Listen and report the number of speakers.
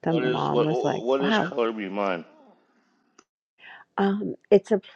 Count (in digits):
2